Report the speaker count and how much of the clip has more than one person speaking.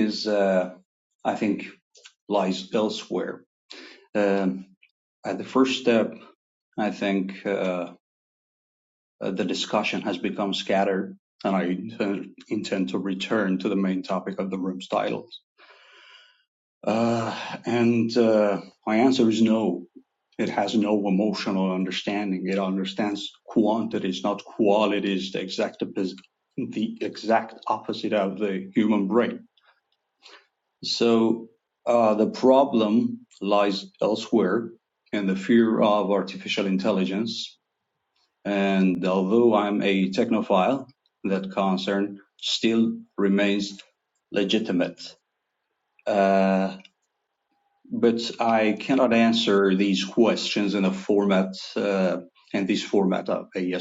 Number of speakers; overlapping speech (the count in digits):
1, no overlap